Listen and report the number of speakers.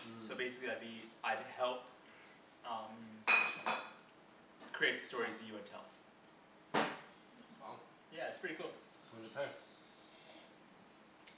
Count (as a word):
two